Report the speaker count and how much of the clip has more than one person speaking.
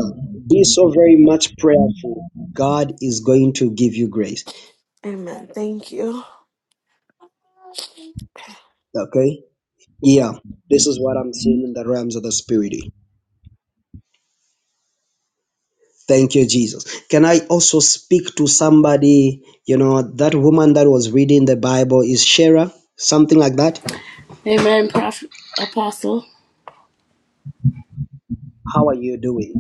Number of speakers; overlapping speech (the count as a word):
three, no overlap